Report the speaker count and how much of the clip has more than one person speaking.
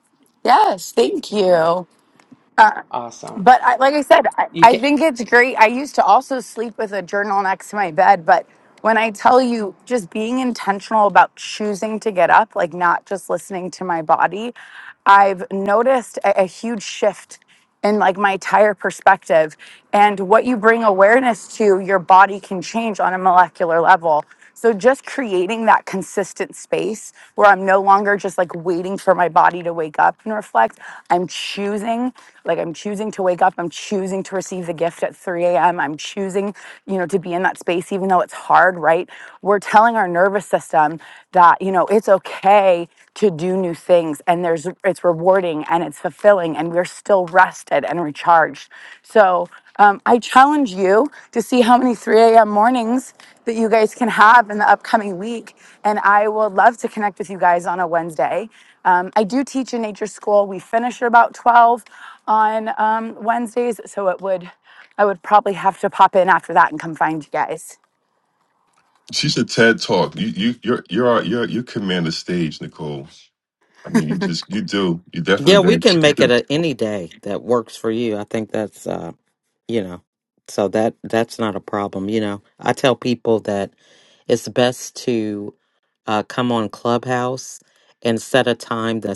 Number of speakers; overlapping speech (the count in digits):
4, about 1%